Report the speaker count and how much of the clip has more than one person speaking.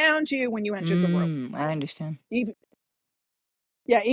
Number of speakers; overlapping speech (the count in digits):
2, about 12%